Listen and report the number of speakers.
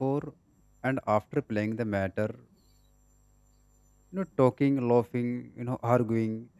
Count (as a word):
one